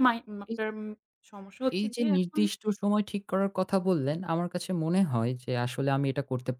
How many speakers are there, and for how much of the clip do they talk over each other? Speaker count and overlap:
two, about 11%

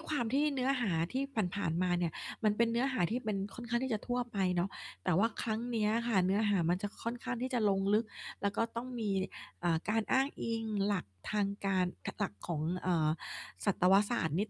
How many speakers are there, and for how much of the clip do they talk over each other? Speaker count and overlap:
one, no overlap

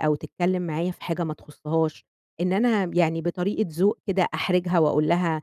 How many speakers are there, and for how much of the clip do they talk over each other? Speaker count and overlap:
one, no overlap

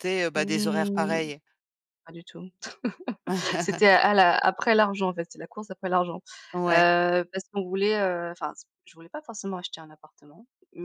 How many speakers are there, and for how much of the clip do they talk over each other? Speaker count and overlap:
two, about 10%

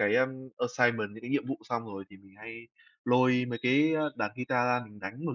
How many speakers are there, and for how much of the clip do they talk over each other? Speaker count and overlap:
one, no overlap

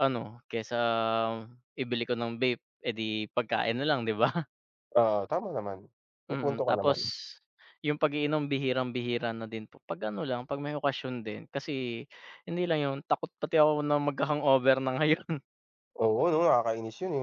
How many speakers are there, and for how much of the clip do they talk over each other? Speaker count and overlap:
two, about 4%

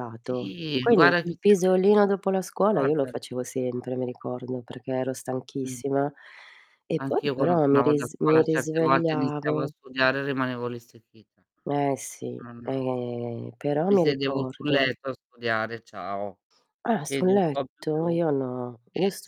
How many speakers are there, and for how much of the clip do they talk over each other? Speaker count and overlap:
two, about 28%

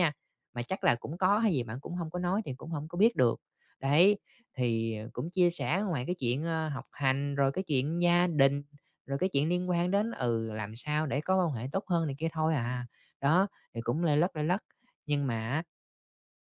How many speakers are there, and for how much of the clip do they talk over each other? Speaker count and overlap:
one, no overlap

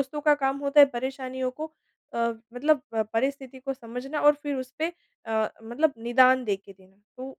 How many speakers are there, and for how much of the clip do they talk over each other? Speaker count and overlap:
one, no overlap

